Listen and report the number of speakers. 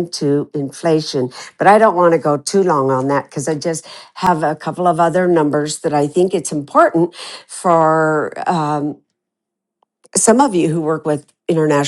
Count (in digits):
1